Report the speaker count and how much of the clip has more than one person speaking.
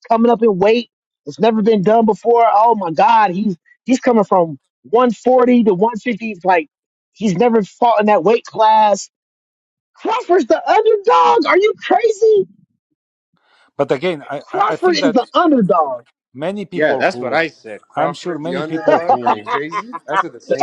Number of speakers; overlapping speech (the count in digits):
3, about 14%